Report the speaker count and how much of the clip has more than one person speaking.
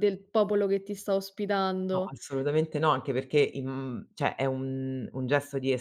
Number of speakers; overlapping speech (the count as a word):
two, about 3%